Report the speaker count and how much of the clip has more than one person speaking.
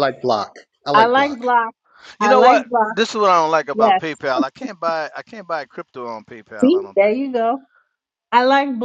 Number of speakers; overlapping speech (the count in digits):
3, about 23%